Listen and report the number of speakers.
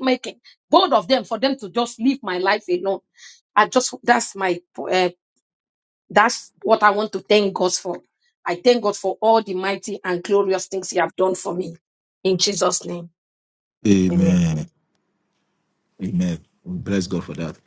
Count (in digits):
2